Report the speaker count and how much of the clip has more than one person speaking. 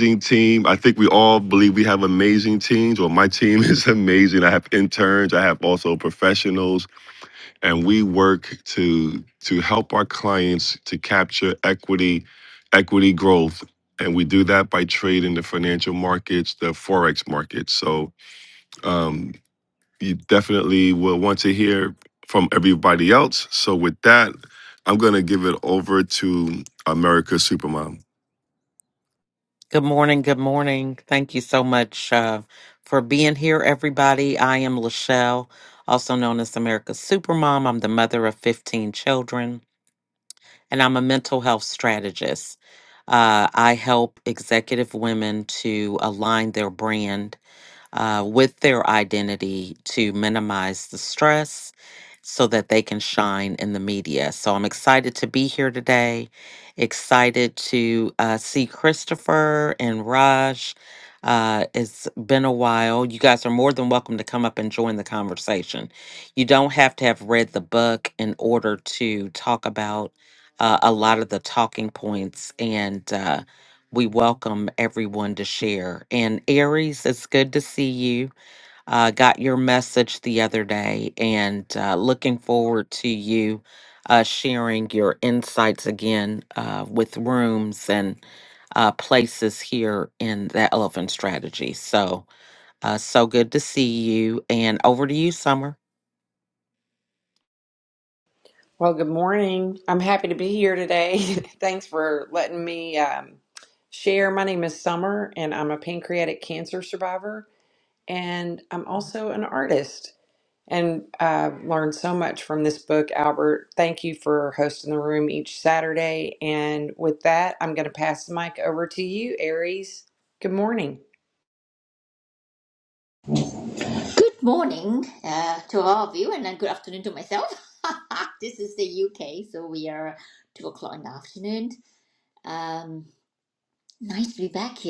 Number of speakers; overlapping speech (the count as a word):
four, no overlap